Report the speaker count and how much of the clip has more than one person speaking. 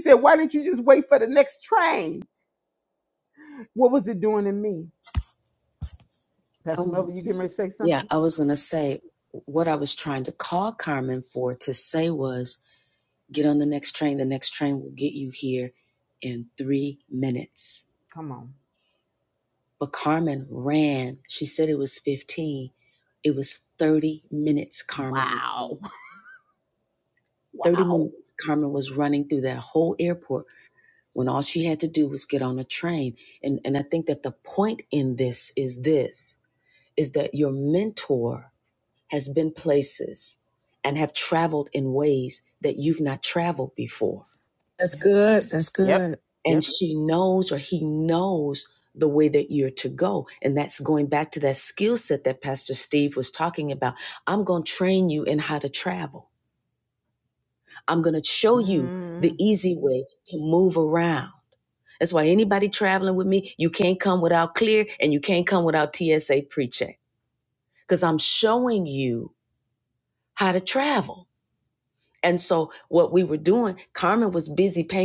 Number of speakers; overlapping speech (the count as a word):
three, about 4%